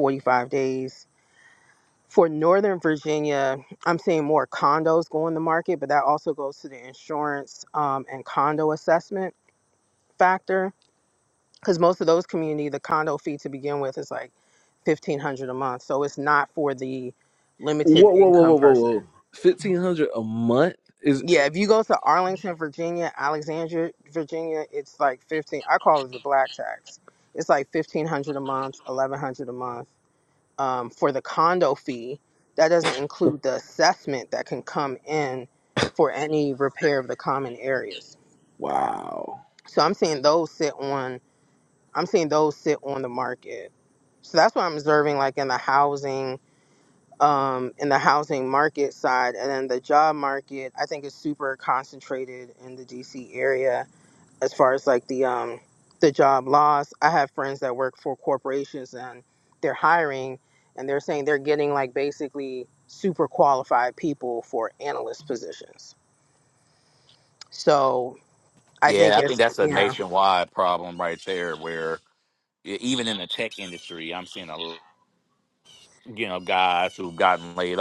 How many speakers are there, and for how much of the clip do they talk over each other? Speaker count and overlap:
3, about 3%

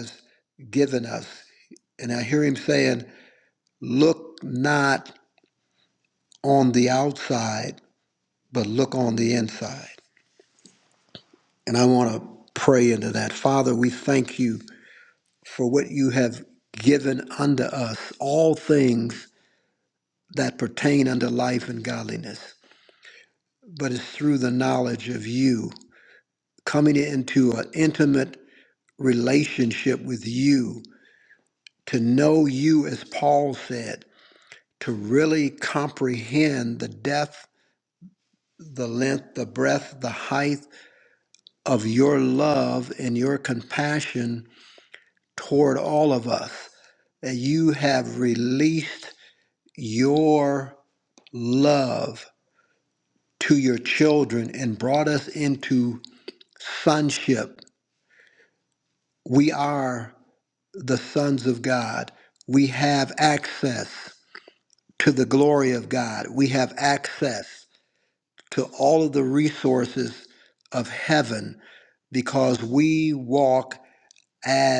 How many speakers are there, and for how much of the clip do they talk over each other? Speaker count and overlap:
1, no overlap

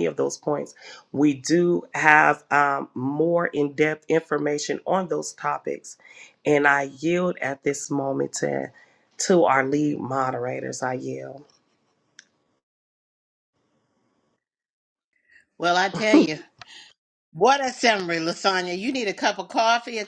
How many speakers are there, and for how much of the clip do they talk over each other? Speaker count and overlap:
2, no overlap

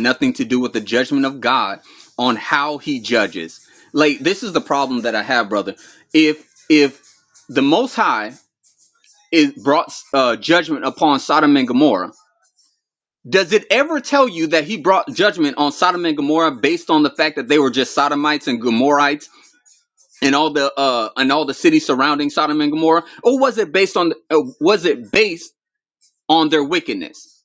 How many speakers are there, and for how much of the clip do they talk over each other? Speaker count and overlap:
1, no overlap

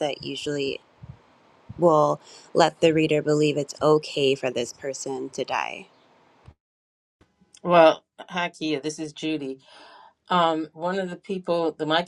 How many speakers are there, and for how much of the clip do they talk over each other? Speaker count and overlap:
2, no overlap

